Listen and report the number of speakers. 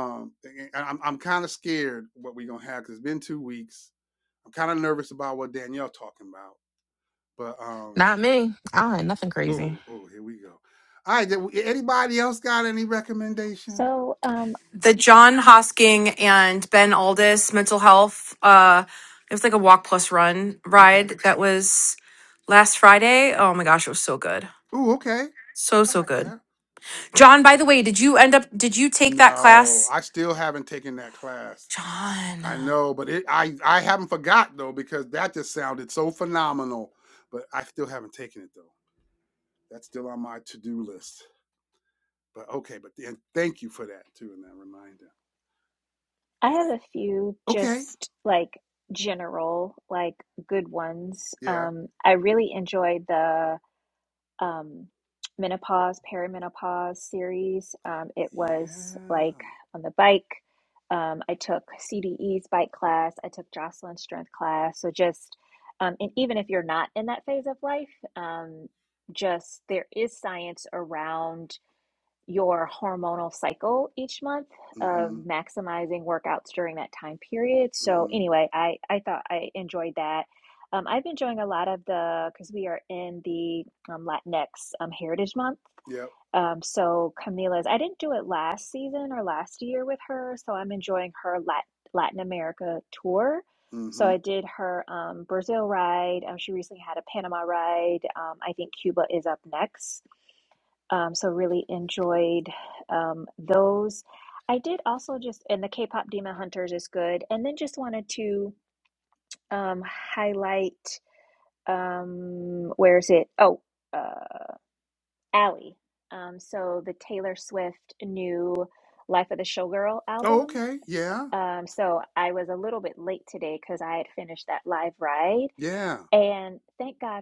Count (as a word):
four